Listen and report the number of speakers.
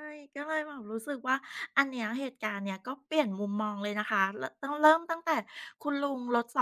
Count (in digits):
1